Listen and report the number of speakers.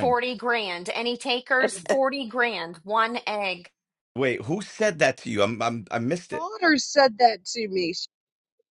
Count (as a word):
three